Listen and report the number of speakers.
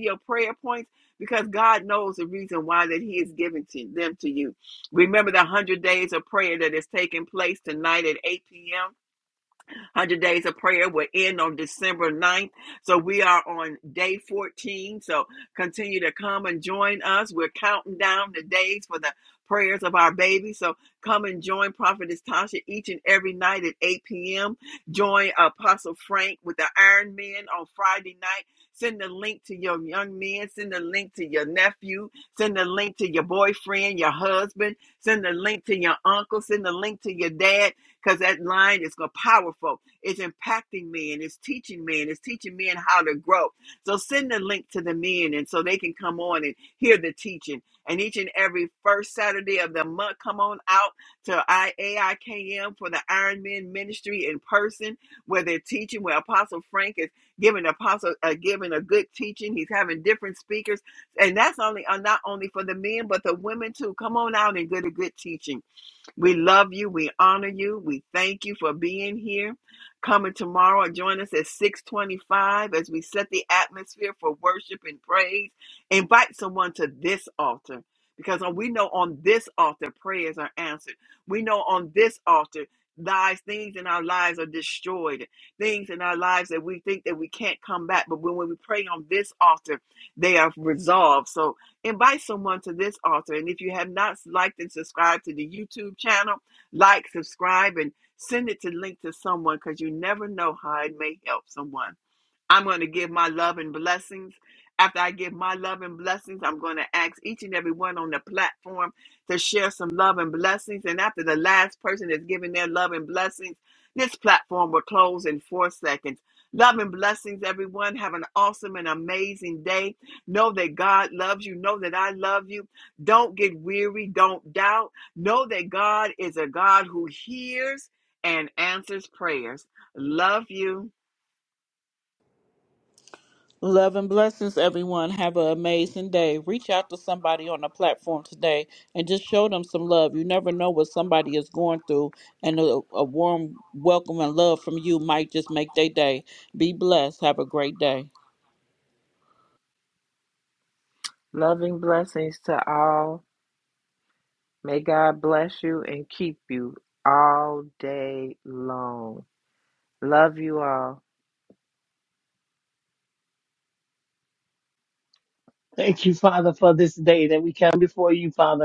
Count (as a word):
four